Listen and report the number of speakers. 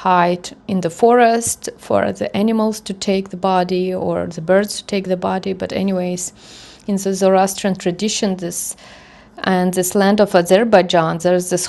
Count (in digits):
1